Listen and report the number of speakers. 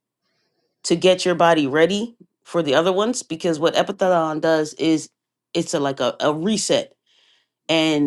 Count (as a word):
one